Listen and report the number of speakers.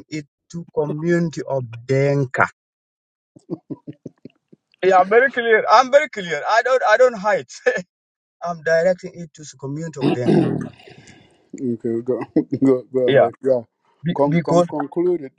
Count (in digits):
2